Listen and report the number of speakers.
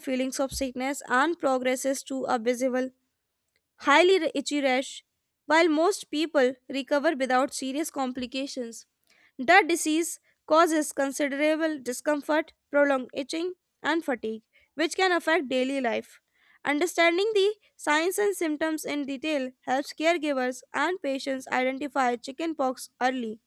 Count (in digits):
1